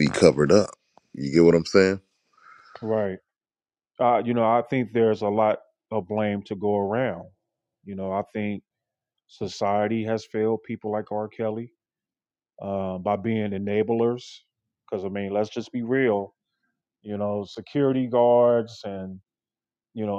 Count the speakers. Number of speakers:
two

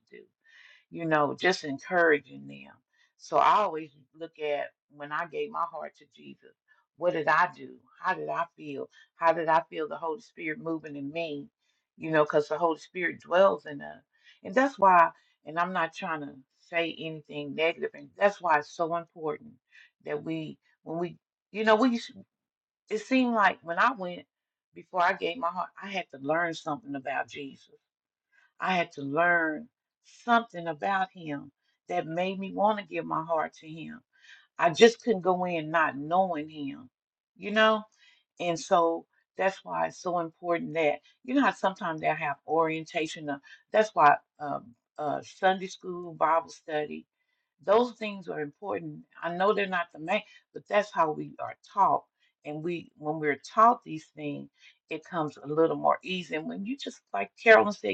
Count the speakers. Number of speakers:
one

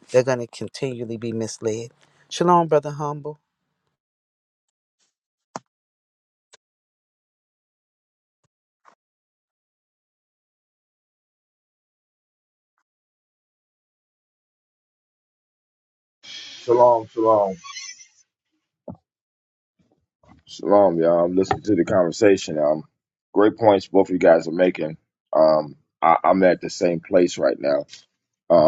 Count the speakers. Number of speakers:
two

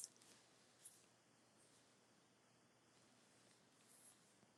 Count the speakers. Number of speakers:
zero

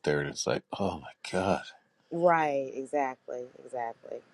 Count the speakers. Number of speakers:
two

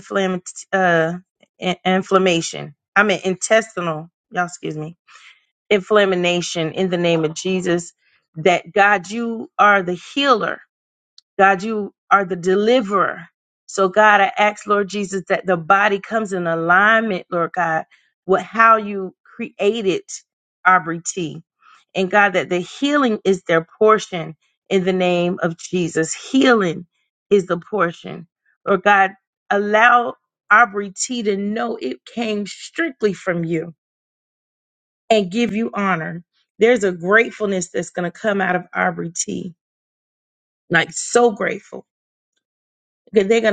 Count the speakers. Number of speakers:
one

